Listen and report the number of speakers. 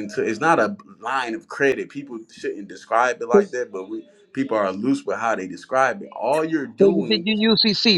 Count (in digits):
2